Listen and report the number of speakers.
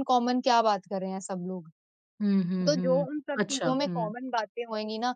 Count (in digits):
2